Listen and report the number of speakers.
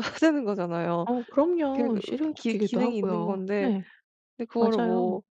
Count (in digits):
2